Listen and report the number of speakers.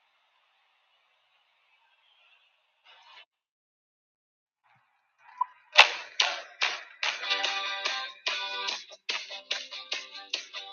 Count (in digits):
0